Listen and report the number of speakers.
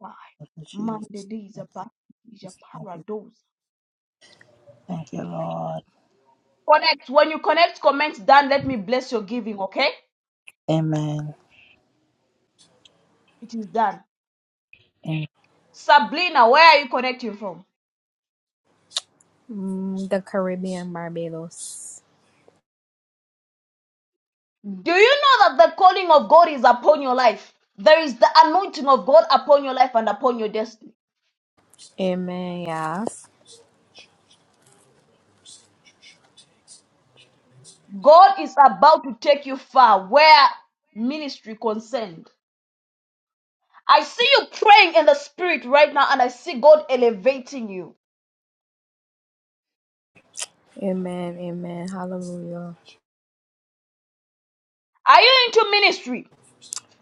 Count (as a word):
three